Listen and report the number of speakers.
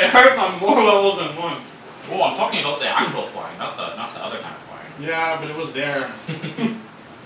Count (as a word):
three